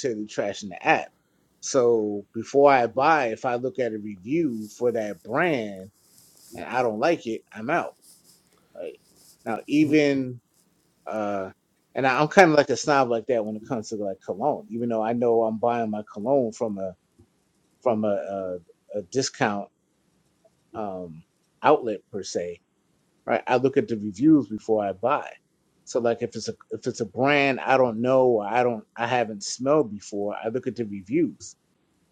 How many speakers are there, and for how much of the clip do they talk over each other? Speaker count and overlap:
one, no overlap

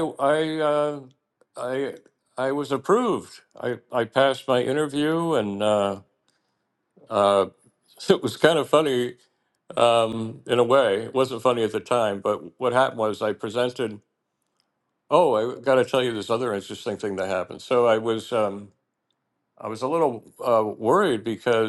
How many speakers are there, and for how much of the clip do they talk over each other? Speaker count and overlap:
one, no overlap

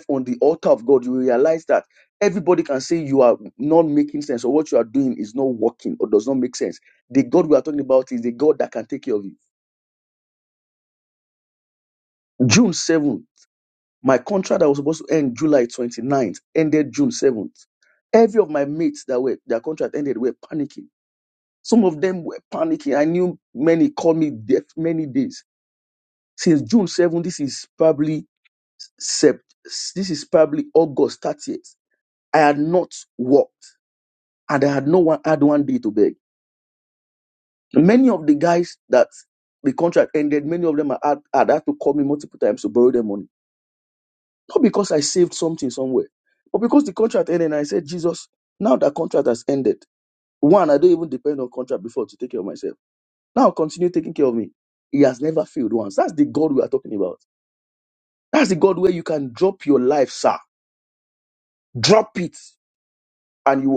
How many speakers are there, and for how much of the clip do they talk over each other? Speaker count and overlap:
one, no overlap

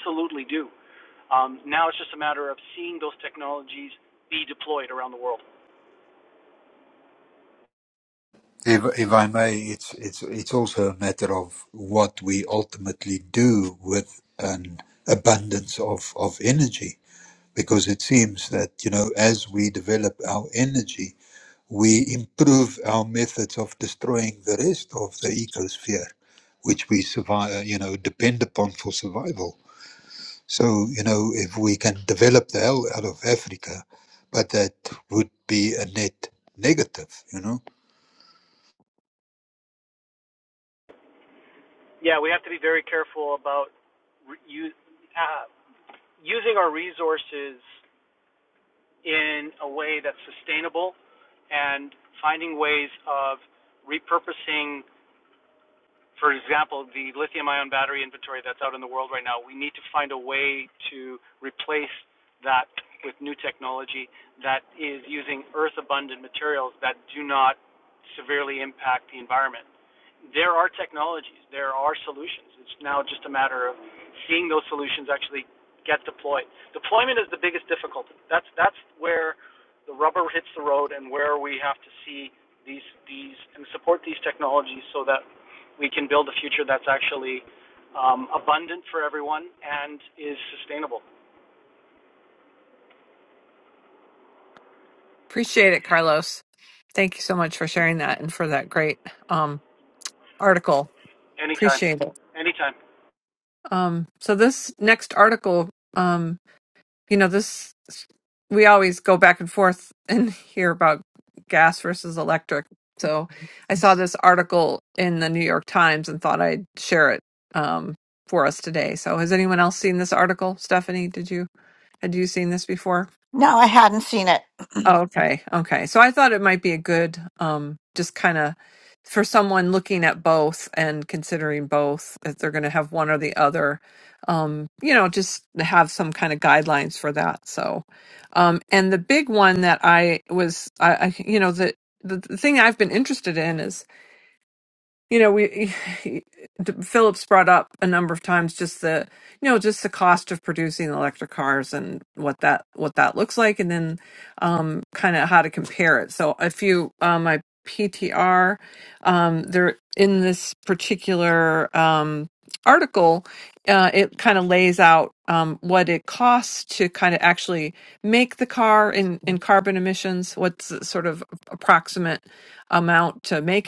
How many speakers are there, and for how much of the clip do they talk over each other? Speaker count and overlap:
four, under 1%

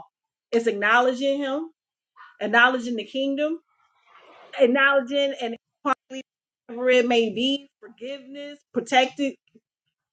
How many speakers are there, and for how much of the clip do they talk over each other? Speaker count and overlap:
one, no overlap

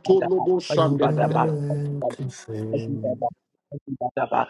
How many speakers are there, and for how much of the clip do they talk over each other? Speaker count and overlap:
three, about 31%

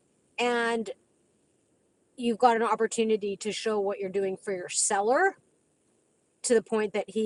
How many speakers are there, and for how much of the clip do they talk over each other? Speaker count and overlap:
one, no overlap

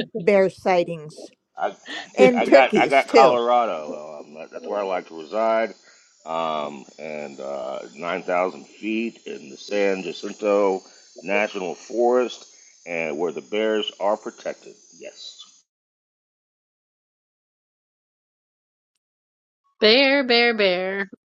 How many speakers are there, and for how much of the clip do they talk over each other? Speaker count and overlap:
three, about 5%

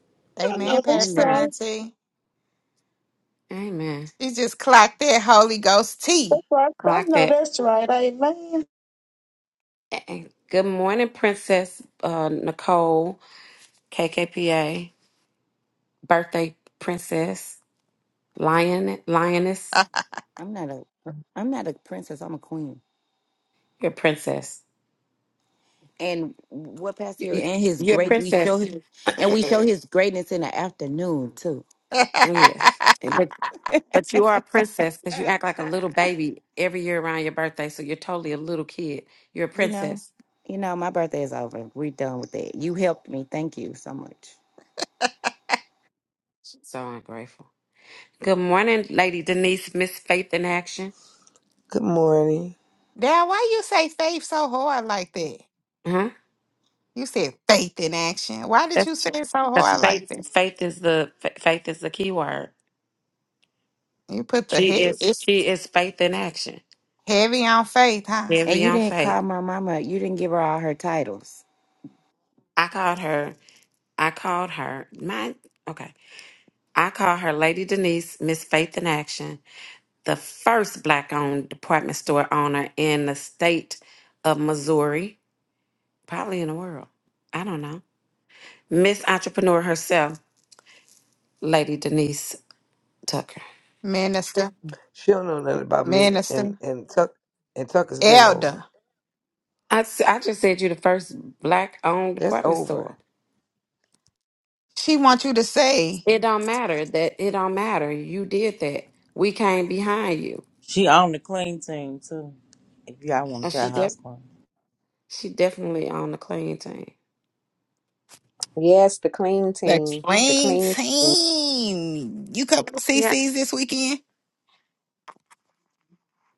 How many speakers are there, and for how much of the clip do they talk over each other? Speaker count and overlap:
seven, about 8%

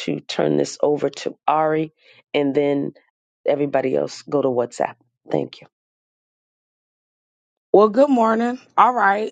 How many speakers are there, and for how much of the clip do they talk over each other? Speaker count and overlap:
two, no overlap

